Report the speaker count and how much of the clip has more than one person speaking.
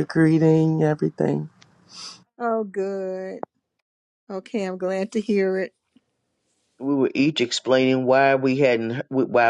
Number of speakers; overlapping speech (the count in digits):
3, no overlap